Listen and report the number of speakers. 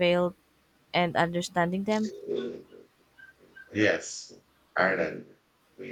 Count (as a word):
two